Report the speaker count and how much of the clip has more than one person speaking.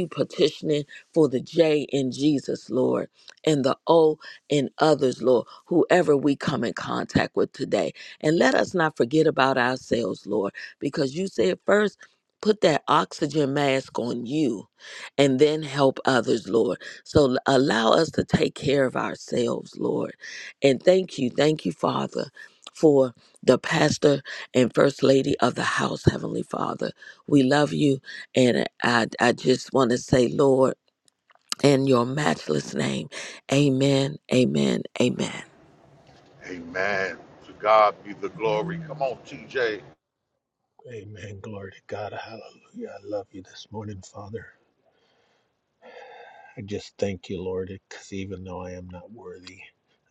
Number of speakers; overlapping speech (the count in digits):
3, no overlap